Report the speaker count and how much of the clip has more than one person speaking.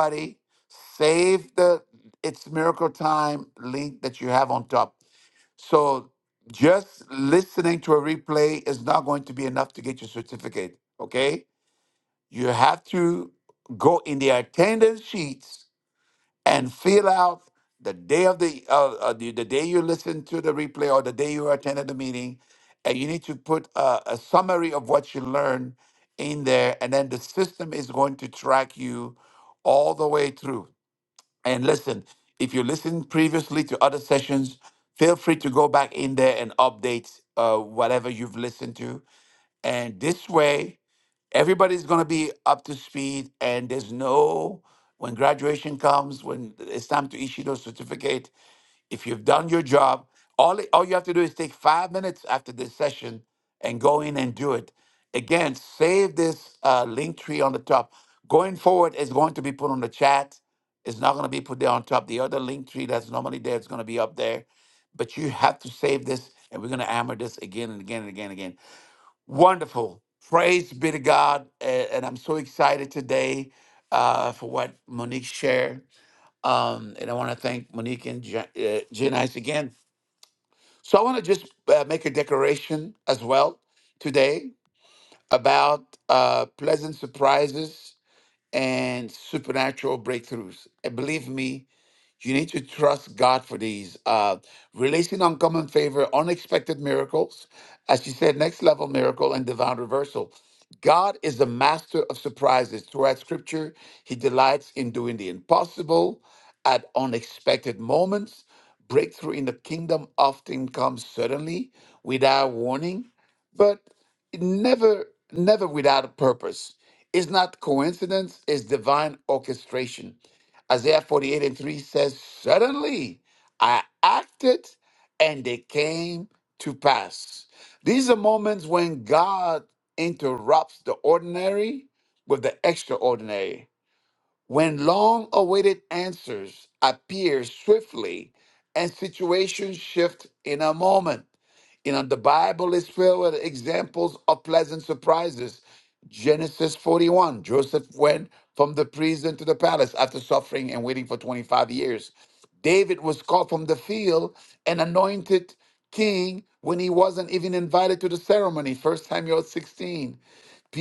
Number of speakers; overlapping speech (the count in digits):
1, no overlap